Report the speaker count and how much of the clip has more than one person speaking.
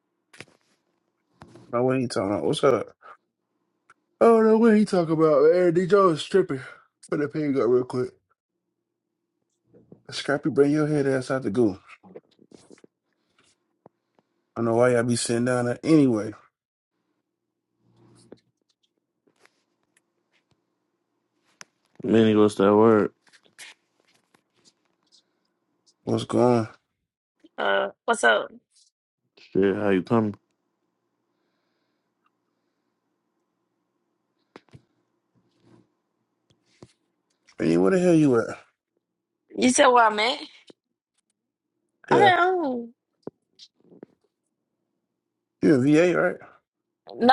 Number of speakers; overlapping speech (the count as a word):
three, about 1%